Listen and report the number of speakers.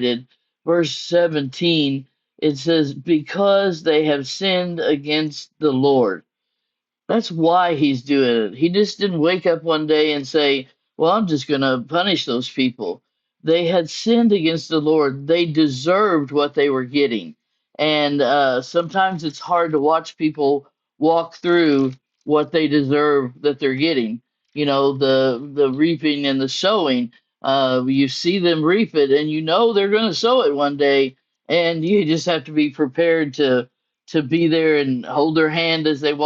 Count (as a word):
one